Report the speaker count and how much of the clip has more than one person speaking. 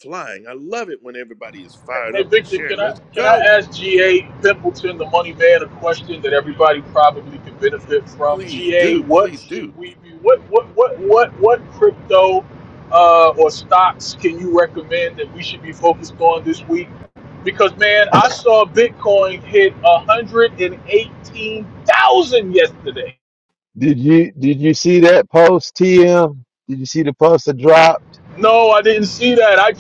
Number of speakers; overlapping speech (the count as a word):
three, about 9%